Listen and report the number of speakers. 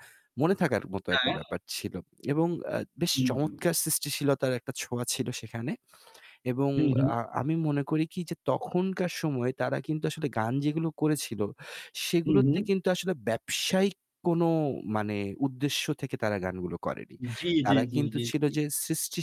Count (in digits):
2